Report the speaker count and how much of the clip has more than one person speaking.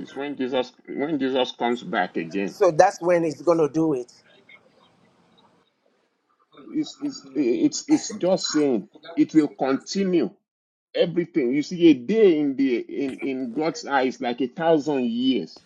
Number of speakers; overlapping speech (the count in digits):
2, no overlap